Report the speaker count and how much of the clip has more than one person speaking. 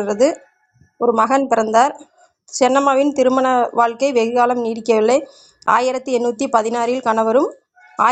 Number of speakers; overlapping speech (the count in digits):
1, no overlap